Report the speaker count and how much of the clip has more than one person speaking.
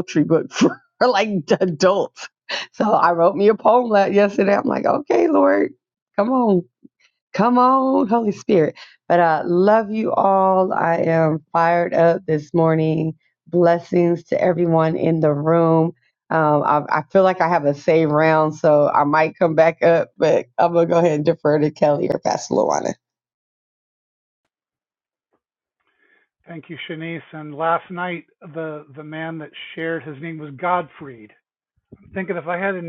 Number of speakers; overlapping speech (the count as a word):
two, no overlap